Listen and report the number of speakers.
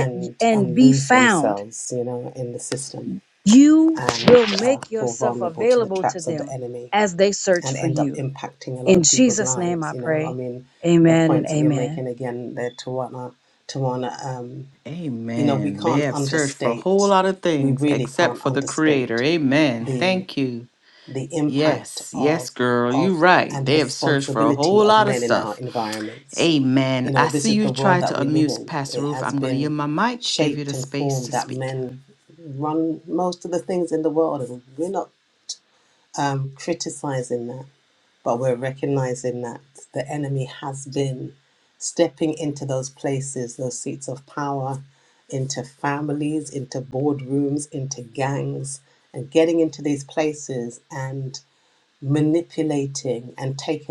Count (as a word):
three